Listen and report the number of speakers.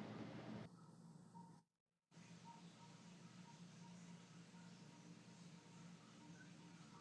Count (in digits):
0